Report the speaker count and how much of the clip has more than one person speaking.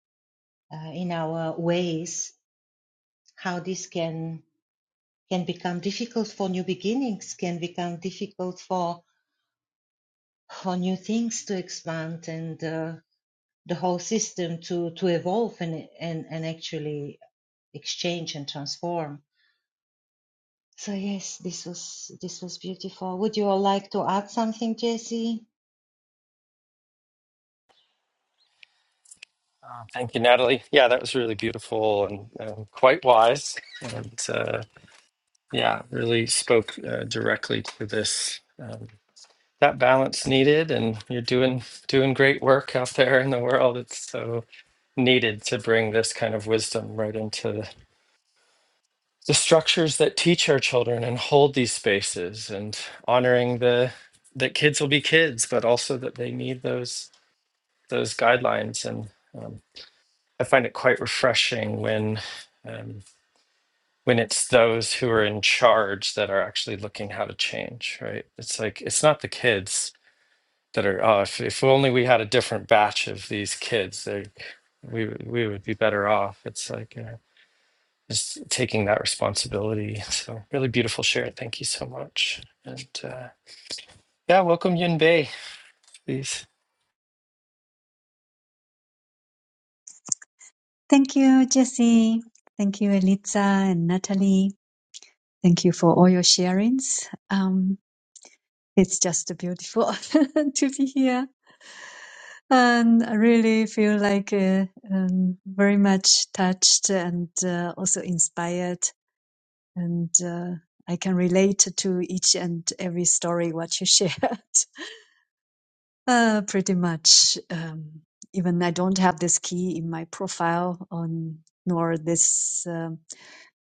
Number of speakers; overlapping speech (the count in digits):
3, no overlap